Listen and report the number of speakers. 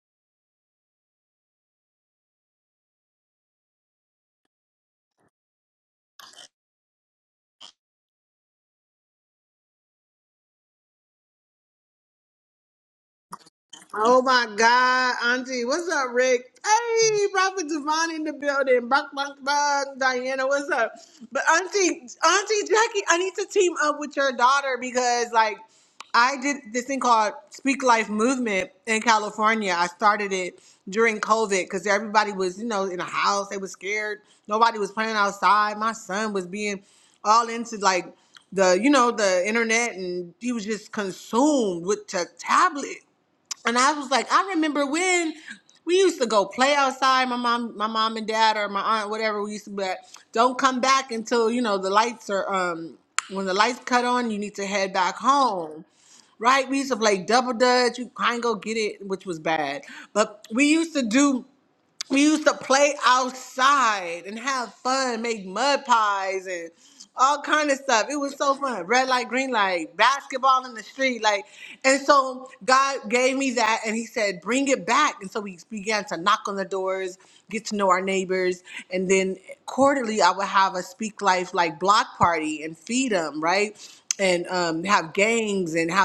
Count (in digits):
1